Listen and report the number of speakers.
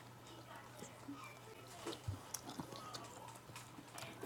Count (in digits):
0